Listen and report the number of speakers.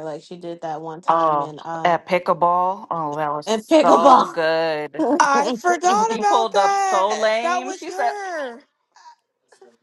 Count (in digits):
3